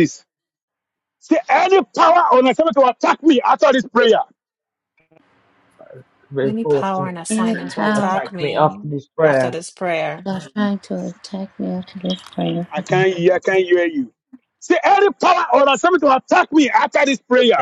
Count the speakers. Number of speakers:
4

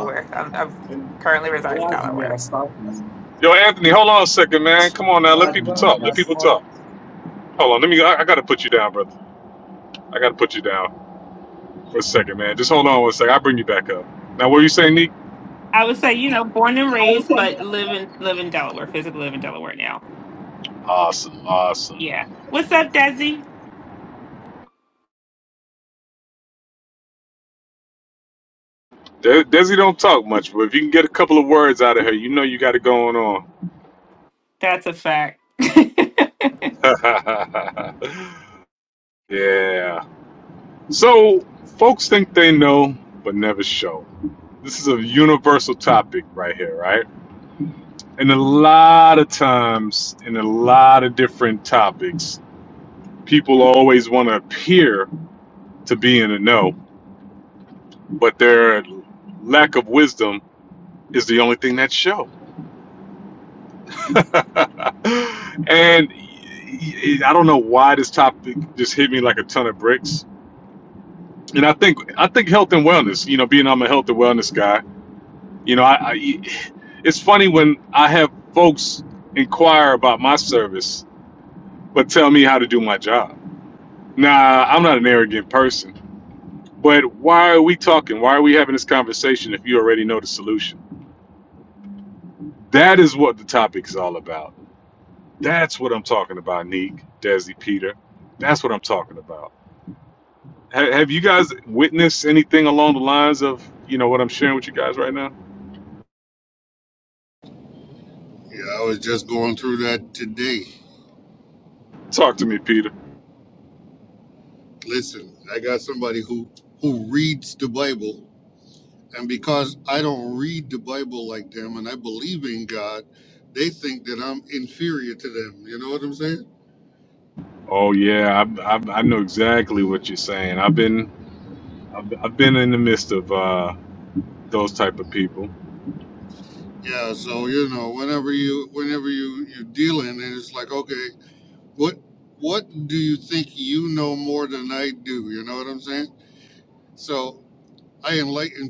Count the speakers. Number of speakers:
4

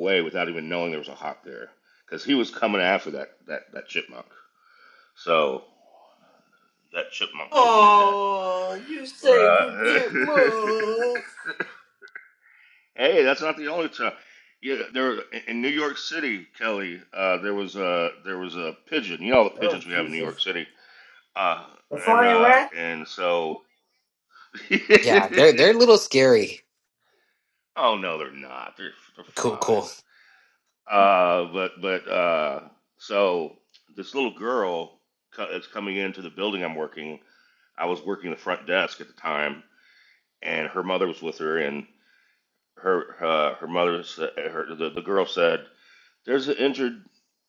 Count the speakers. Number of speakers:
3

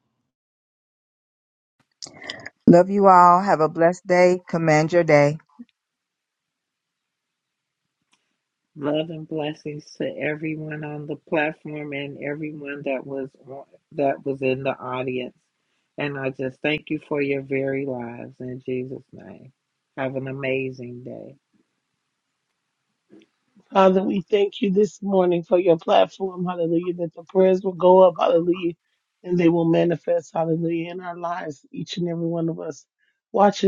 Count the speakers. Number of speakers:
3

